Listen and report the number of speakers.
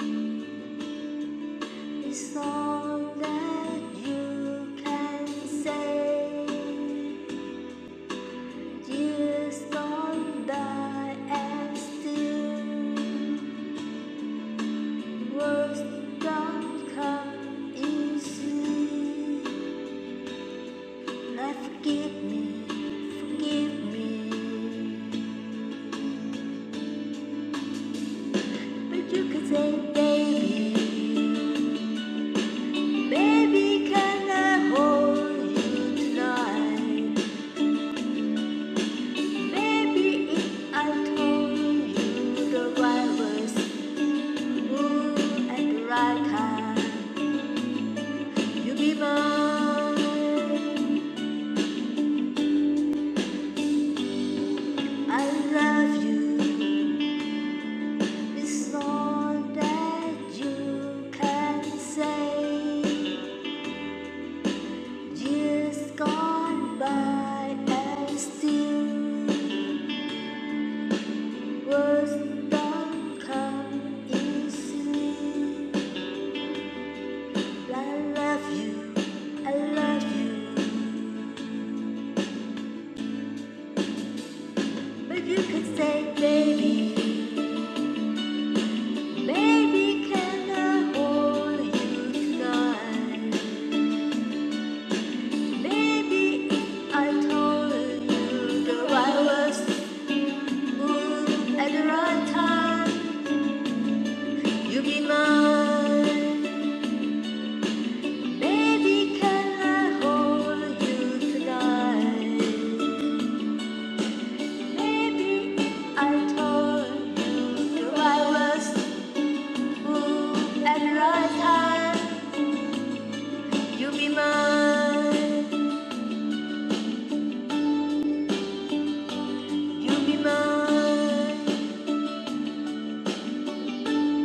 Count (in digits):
1